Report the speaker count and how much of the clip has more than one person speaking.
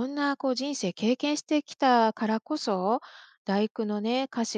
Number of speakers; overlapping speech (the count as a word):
one, no overlap